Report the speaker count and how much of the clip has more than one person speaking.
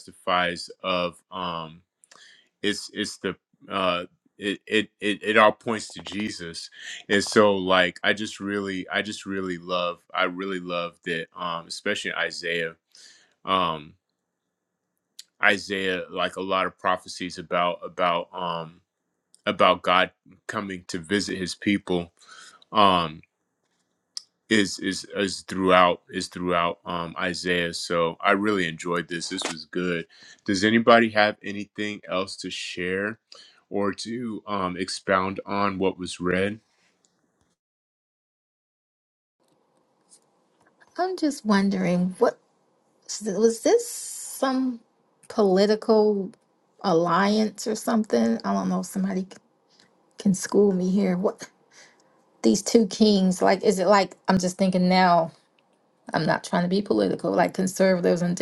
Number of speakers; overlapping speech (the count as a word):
two, no overlap